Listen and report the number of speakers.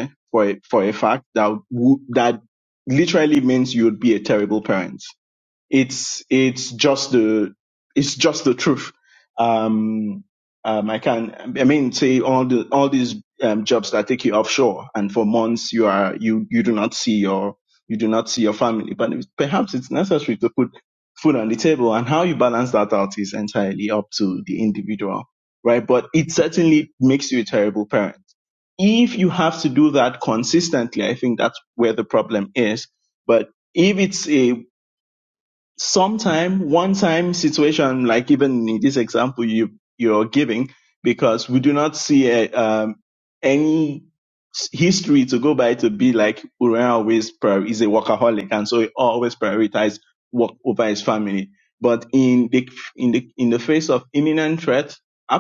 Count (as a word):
one